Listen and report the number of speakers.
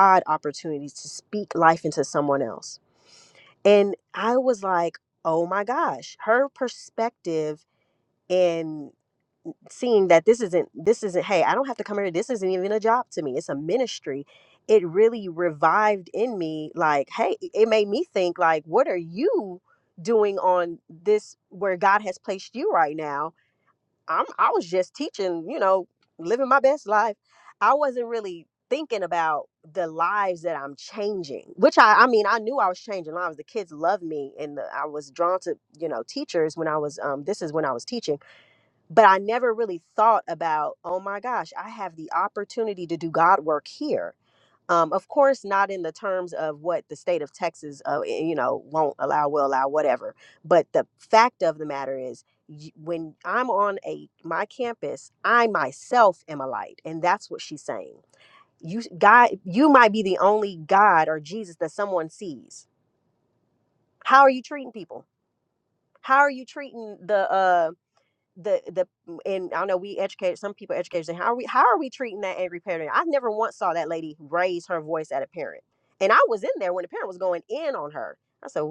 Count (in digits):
1